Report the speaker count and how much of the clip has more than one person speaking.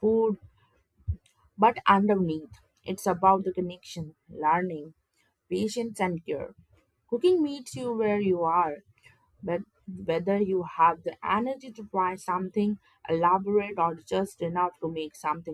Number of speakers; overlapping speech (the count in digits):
1, no overlap